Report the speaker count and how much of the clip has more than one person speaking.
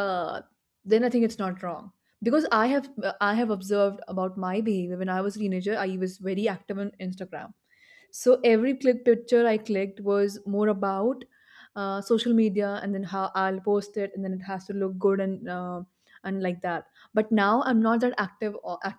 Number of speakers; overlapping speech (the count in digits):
1, no overlap